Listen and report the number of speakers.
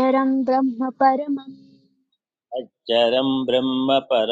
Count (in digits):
2